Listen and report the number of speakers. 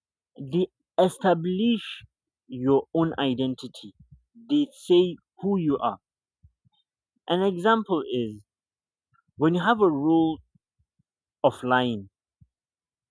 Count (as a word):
one